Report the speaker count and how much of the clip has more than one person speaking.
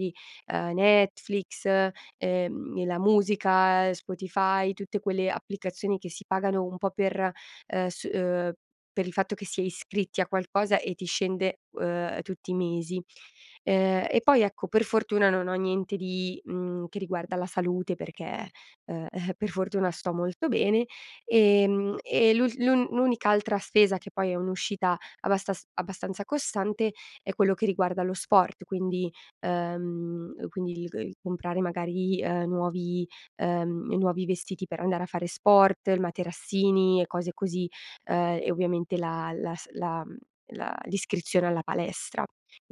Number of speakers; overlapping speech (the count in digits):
1, no overlap